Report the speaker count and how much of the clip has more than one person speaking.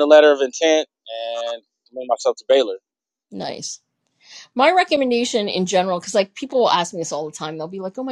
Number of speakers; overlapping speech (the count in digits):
2, no overlap